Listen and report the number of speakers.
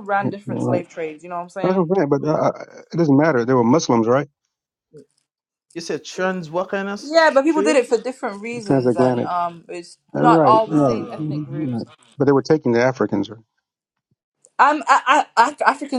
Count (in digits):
3